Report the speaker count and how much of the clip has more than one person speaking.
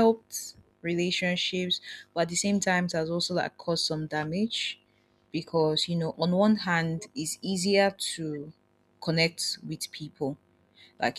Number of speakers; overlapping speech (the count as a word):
one, no overlap